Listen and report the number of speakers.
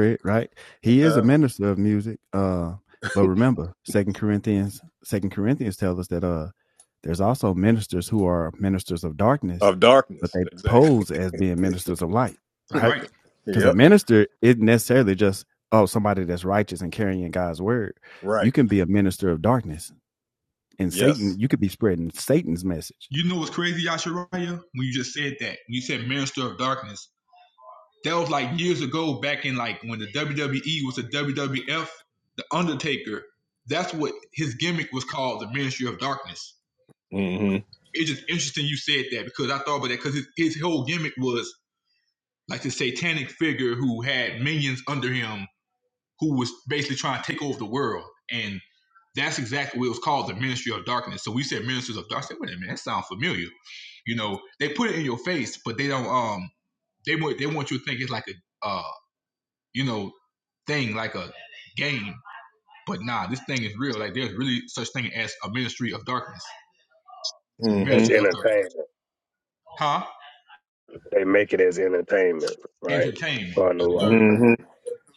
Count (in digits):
4